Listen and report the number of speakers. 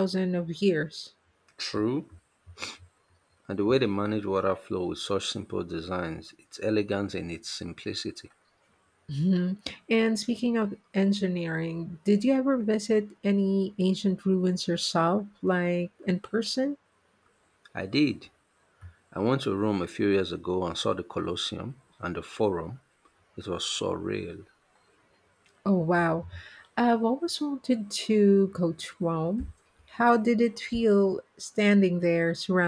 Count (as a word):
two